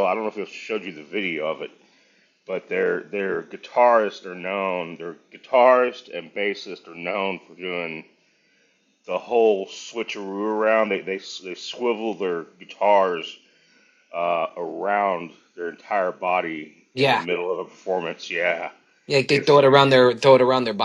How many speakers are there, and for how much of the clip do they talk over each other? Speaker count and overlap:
2, about 3%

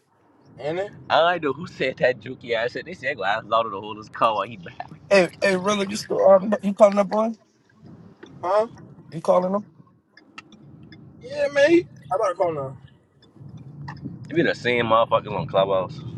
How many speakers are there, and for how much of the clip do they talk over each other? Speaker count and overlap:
3, no overlap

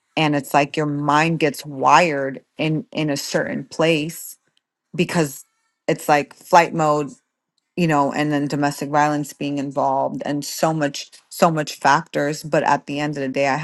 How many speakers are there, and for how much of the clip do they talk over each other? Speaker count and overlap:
1, no overlap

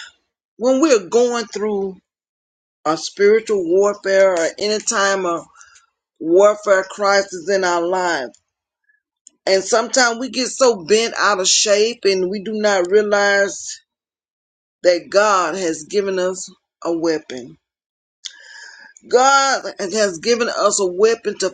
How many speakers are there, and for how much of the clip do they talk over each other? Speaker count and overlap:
1, no overlap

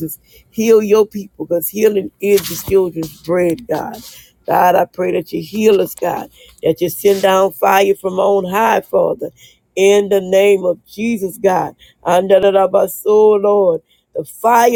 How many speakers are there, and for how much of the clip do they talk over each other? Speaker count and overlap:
1, no overlap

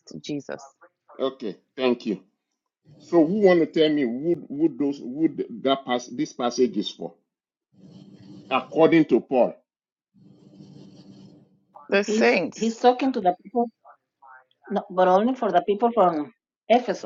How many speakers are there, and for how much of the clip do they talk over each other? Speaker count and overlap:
3, about 5%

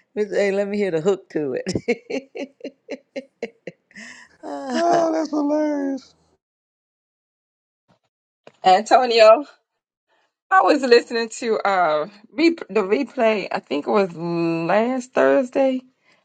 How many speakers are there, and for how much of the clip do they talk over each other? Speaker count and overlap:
3, about 2%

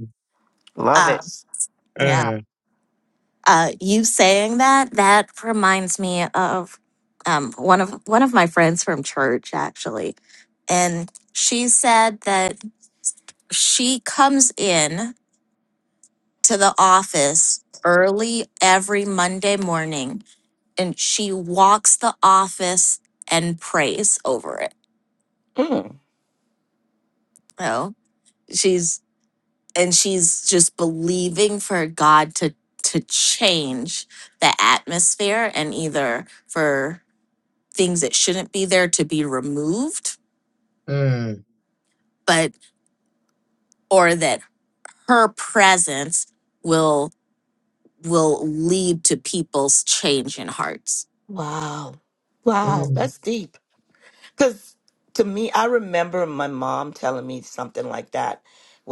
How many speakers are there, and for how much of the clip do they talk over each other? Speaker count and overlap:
3, about 1%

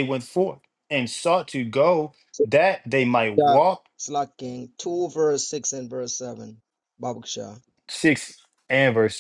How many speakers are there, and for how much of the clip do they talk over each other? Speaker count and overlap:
2, about 3%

